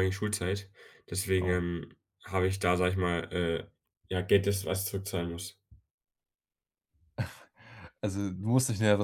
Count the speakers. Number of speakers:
2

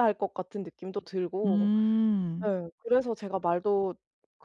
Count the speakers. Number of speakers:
2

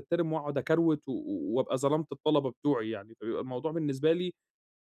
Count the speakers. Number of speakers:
1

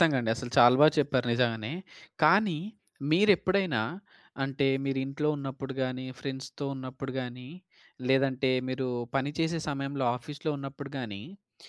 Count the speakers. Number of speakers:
1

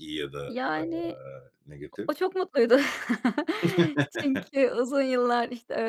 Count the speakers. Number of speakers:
2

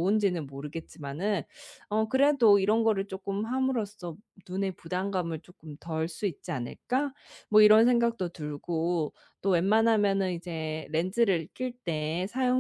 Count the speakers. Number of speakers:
1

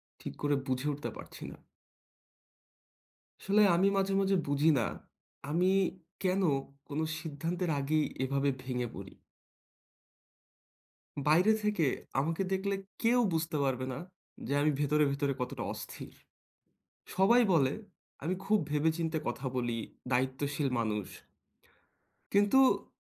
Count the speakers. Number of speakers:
1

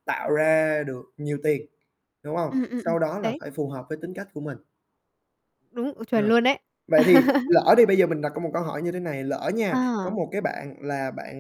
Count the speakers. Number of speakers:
2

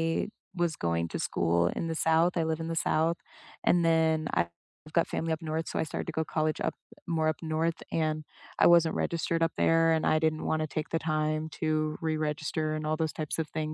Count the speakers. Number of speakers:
1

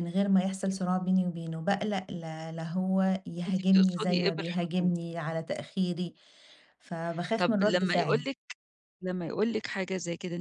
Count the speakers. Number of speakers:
2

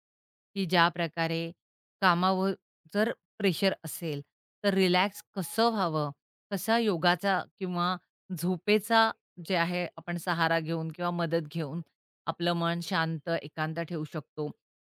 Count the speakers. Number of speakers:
1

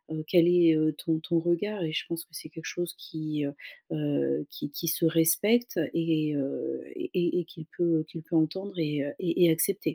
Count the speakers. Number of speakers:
1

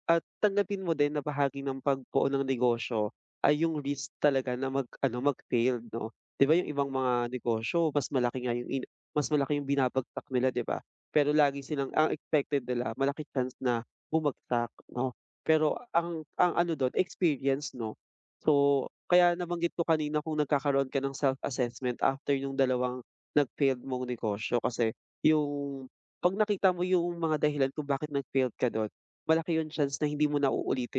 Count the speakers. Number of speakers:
1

